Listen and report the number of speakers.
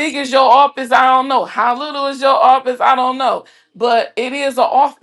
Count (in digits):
1